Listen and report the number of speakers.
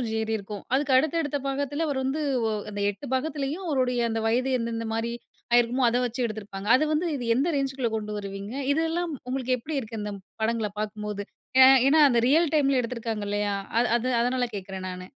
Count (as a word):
one